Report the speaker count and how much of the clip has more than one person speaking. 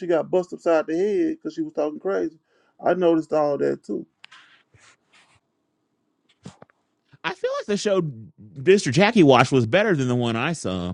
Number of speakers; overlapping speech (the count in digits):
2, no overlap